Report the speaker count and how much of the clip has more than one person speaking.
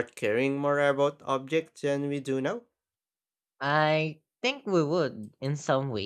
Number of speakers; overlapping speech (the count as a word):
two, no overlap